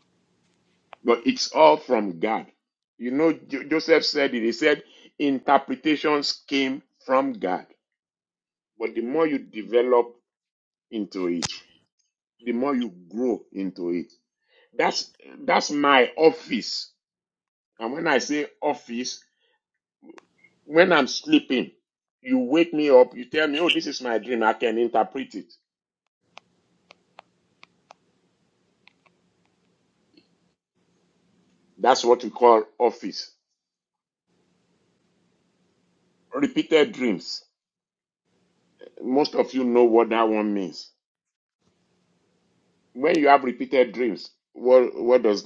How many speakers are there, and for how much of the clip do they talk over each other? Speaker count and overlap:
one, no overlap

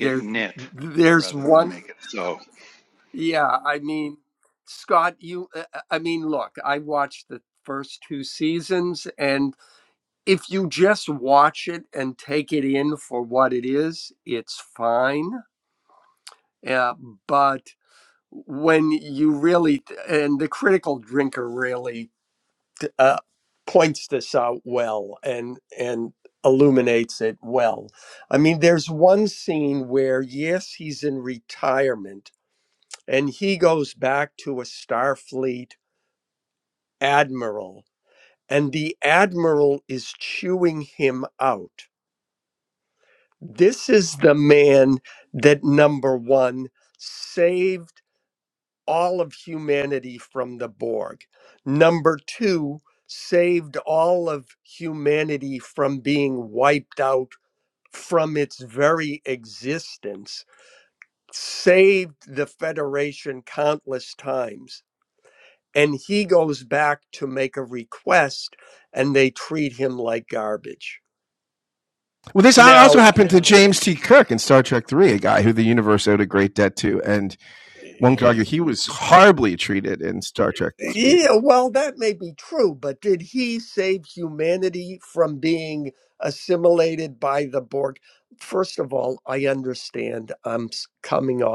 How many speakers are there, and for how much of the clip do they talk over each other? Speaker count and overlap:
three, about 2%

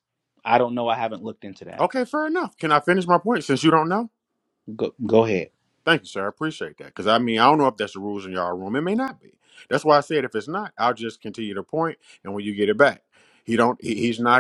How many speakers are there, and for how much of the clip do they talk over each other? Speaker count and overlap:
two, under 1%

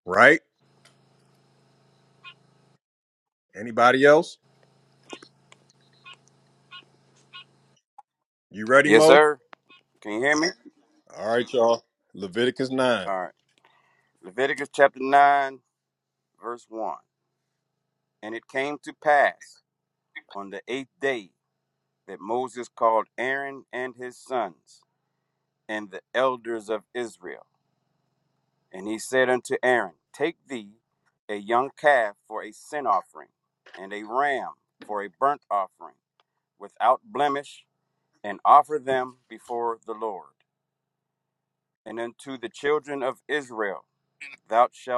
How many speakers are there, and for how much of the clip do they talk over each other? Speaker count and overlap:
two, about 1%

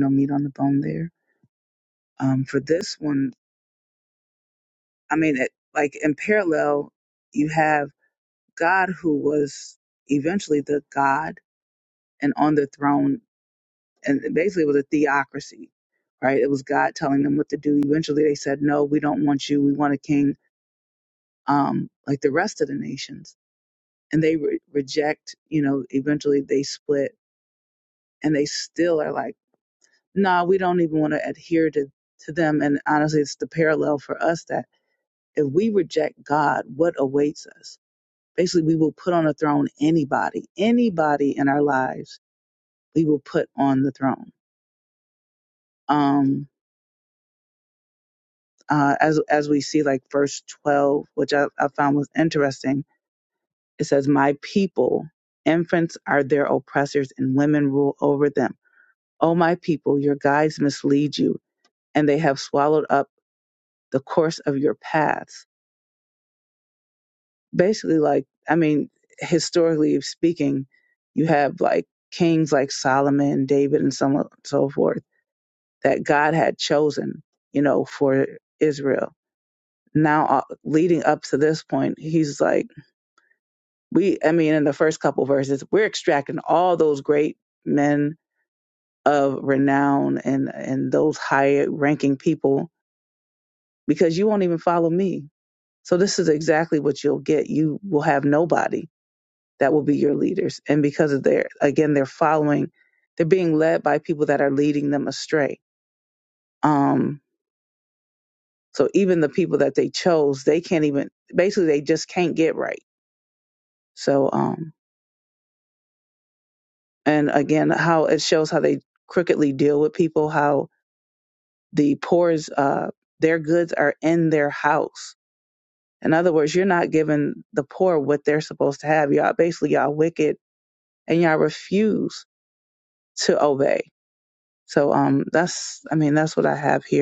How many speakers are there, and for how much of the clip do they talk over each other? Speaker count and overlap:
one, no overlap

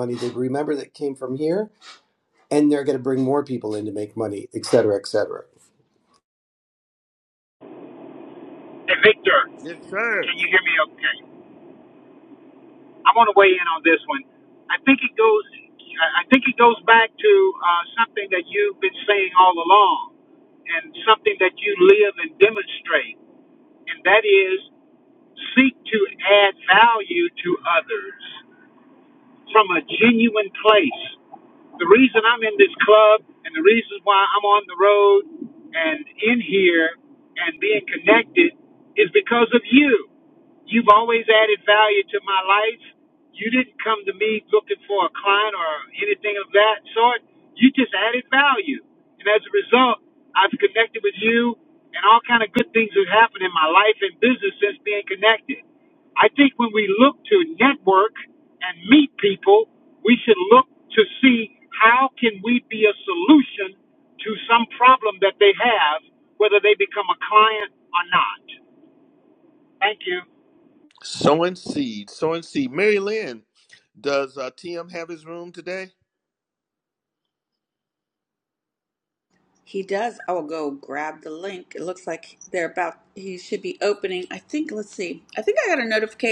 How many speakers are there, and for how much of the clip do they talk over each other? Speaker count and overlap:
four, under 1%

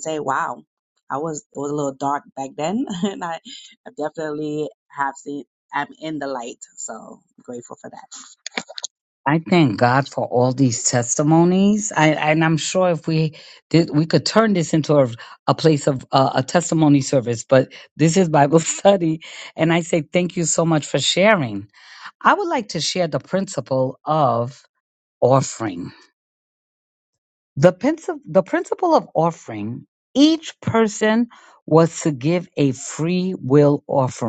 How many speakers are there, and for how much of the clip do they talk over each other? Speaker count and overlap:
two, no overlap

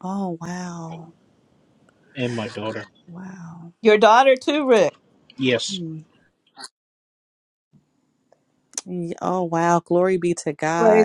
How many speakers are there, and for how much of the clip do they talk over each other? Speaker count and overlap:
three, about 2%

